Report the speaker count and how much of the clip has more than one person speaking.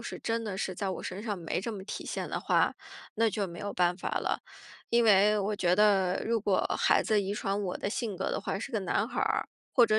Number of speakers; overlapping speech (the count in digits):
1, no overlap